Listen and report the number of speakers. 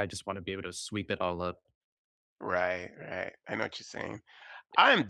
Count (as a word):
two